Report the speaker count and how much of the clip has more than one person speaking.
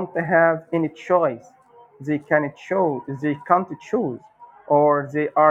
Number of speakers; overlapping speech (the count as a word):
one, no overlap